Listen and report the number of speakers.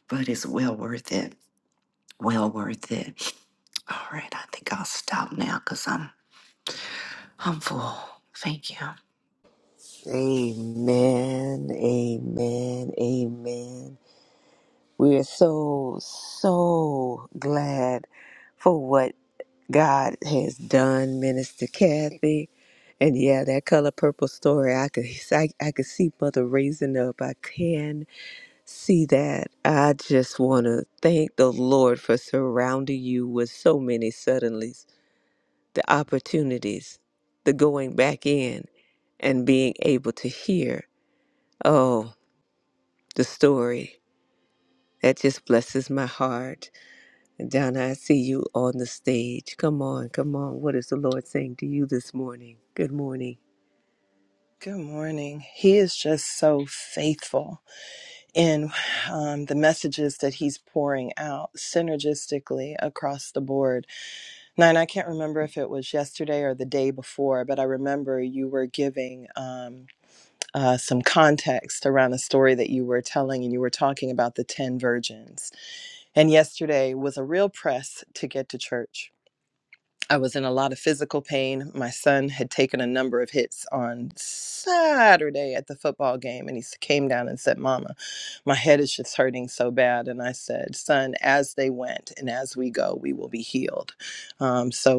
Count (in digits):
3